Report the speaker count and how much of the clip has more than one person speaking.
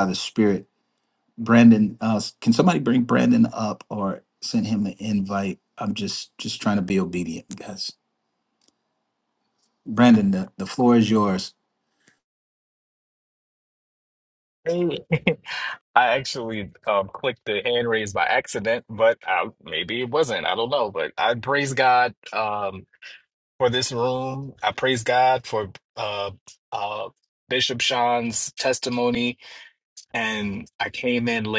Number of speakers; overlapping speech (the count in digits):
2, no overlap